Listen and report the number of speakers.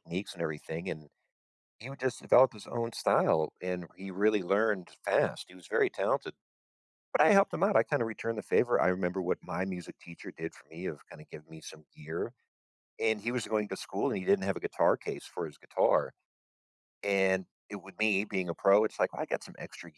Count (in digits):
1